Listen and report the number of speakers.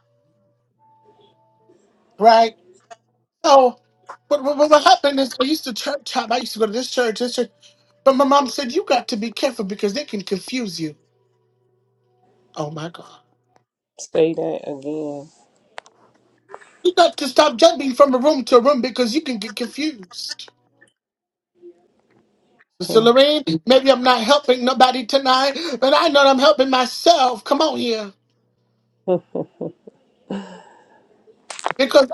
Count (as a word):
two